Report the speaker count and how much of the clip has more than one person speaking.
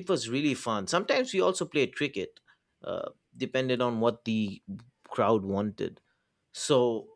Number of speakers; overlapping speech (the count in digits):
1, no overlap